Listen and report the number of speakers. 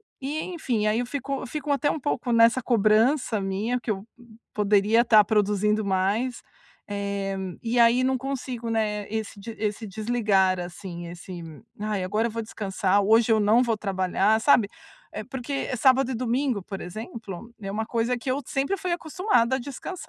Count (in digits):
1